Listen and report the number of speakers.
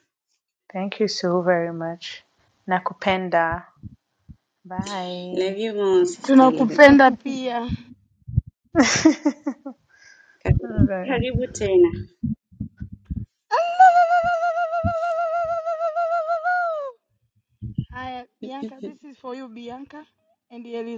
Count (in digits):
3